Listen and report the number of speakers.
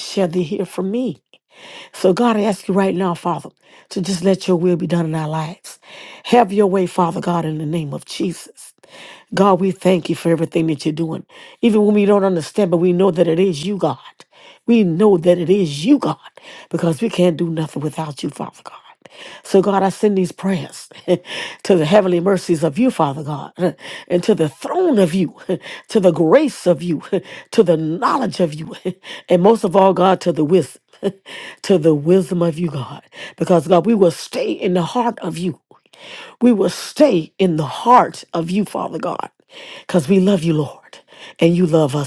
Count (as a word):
one